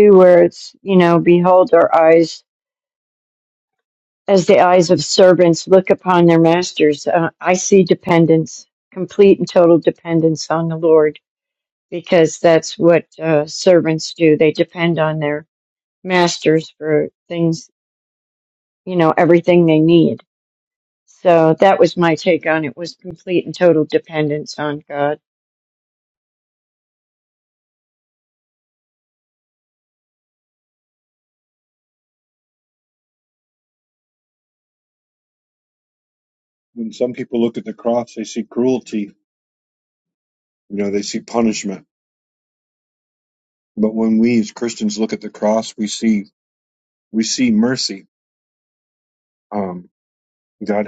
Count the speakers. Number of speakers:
2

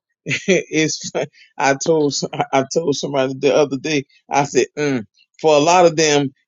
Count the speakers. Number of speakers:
1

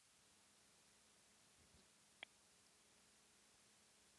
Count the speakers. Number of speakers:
0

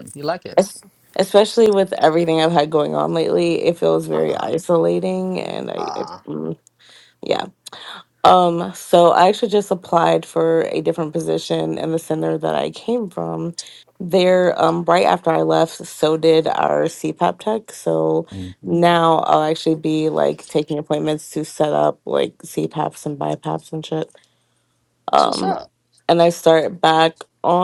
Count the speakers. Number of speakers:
2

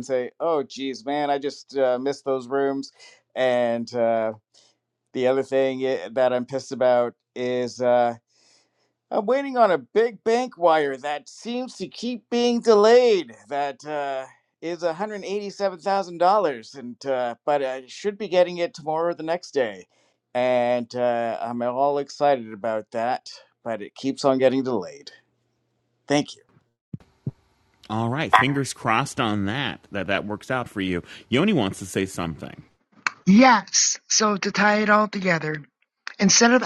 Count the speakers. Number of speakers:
3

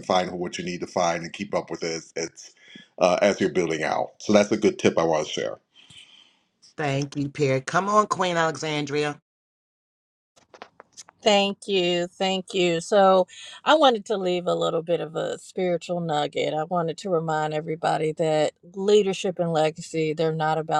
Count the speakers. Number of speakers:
3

